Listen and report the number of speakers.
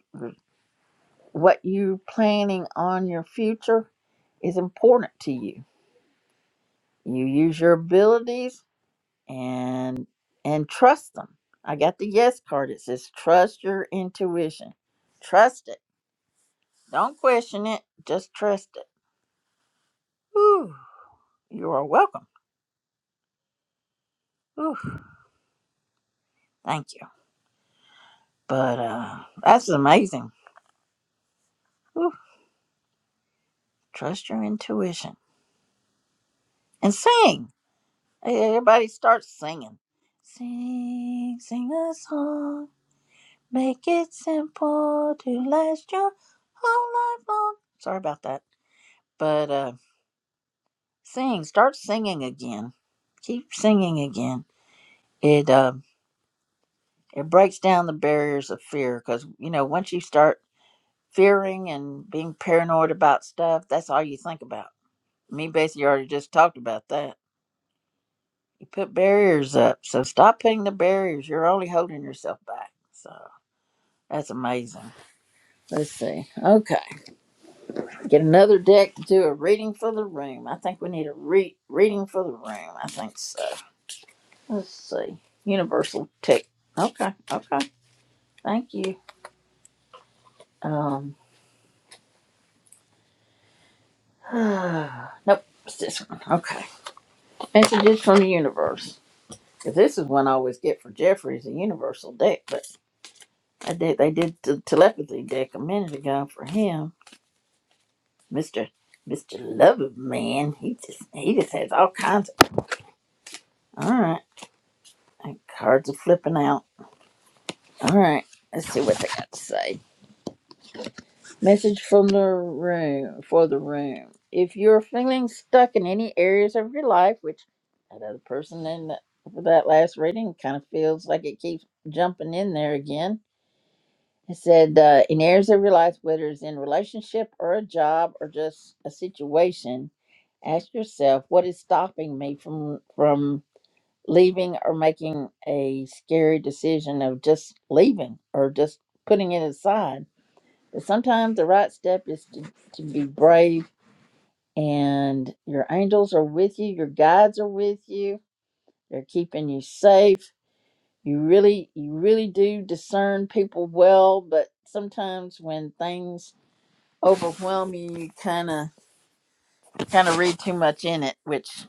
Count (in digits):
1